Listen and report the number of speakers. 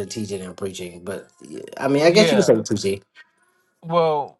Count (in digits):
2